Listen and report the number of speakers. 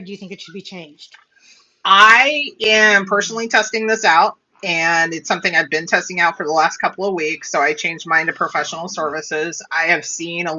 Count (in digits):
2